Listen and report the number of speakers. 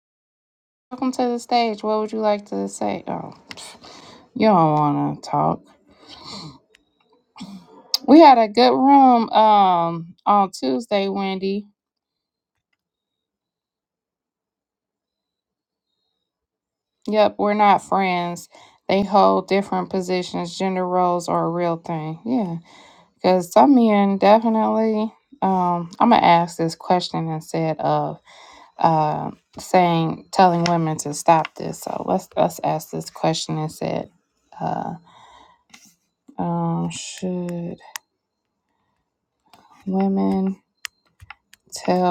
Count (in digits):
1